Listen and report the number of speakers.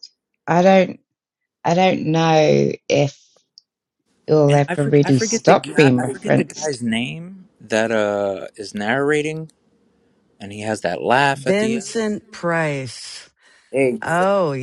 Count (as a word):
three